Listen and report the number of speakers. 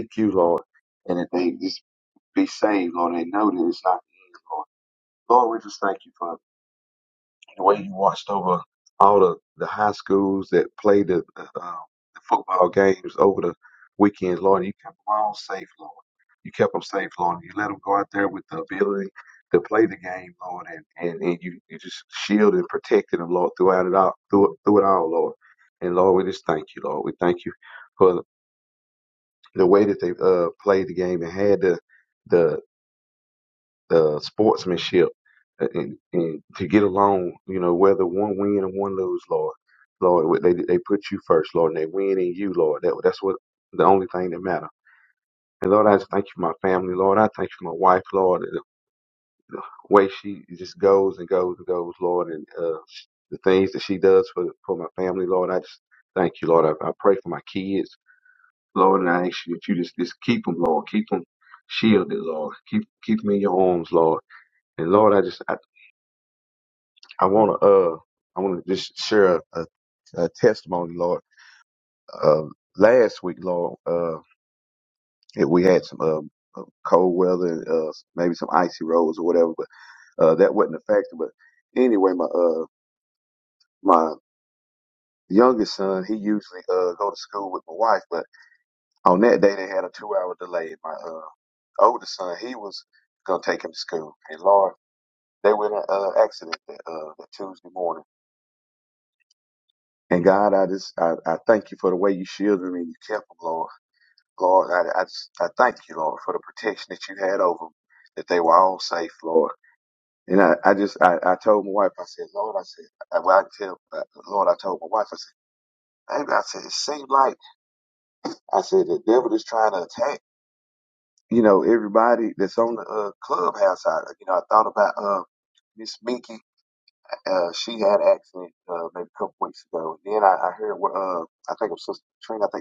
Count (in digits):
1